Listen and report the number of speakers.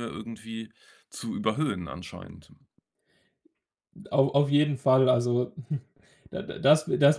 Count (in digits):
2